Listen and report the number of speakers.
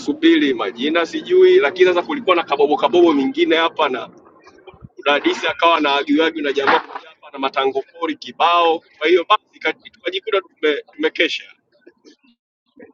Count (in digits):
1